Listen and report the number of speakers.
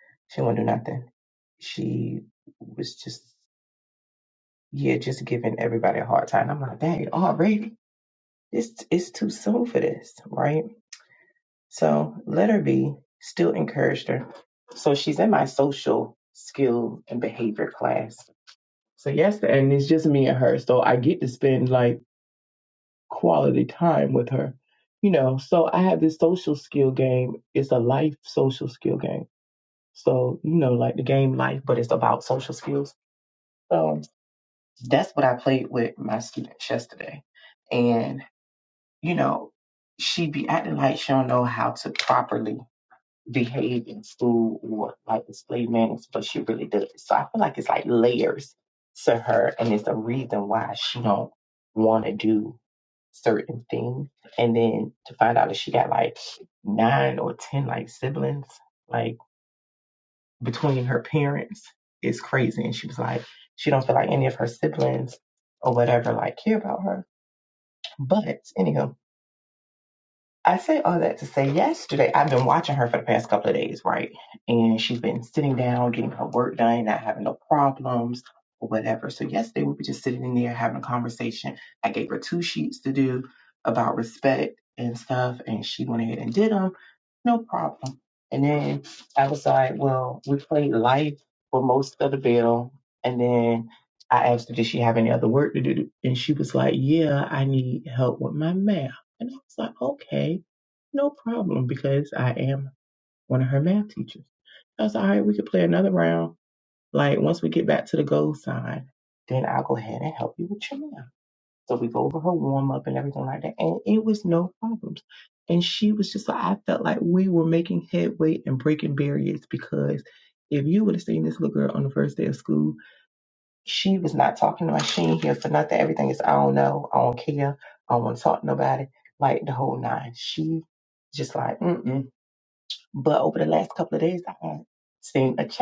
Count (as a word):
one